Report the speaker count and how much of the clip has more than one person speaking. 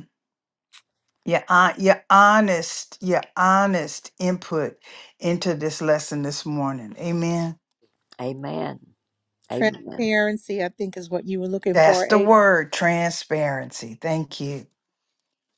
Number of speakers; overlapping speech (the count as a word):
three, about 7%